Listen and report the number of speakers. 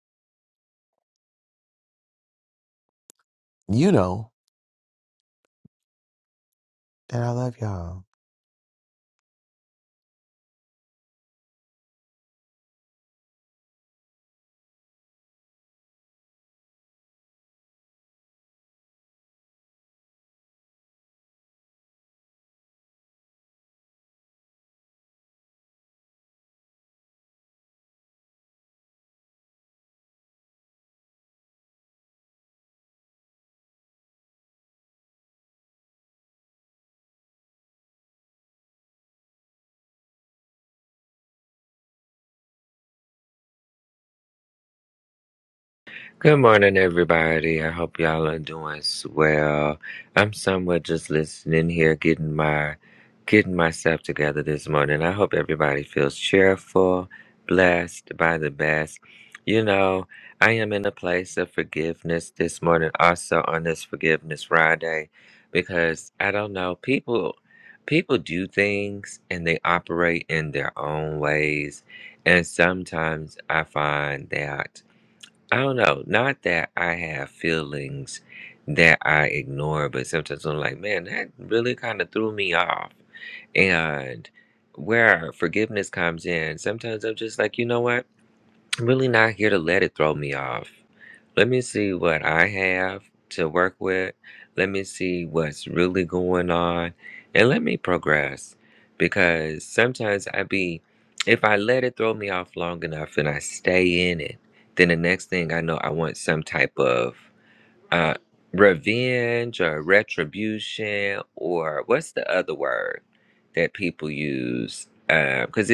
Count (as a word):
two